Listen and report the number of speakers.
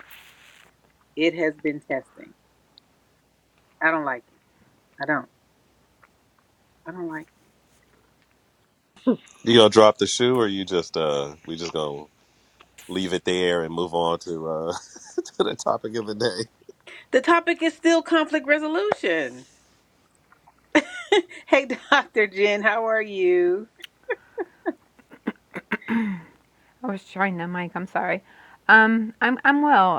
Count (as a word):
three